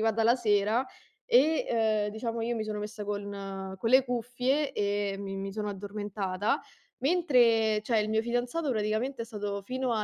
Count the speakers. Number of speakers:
one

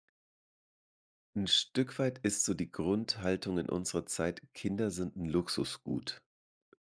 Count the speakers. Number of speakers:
one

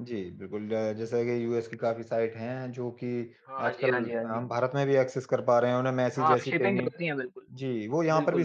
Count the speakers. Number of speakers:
two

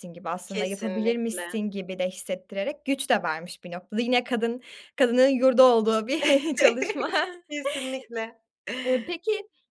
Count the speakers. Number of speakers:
two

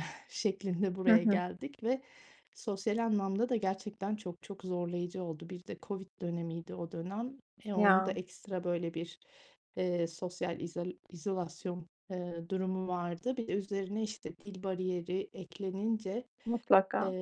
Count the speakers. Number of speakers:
two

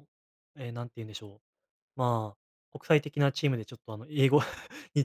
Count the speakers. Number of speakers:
one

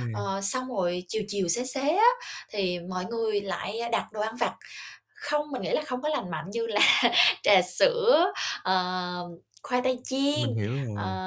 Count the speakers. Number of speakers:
two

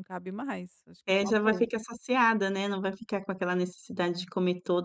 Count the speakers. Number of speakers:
two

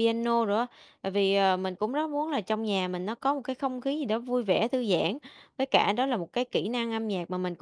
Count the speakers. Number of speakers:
one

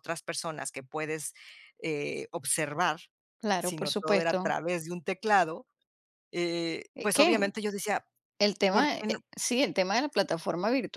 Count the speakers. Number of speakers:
two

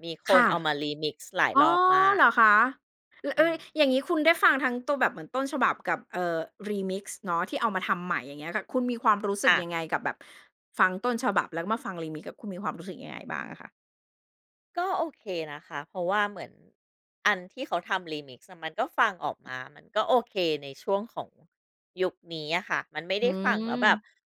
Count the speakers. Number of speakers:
two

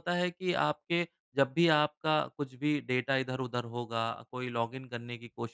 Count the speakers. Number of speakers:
one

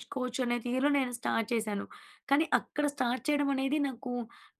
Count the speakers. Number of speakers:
one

